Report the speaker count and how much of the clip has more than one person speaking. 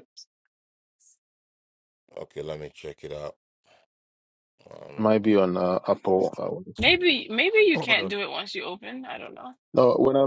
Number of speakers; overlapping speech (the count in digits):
3, about 5%